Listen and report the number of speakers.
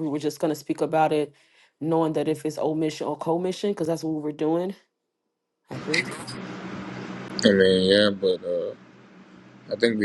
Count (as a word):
two